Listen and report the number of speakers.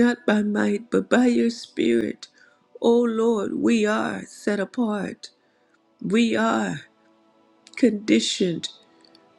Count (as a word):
one